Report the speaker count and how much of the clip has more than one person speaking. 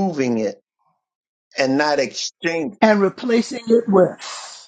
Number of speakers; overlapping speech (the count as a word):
two, no overlap